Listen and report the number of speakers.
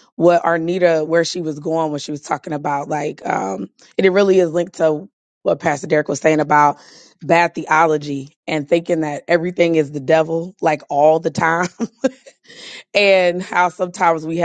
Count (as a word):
one